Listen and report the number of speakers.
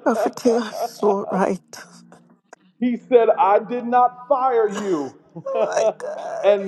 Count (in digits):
2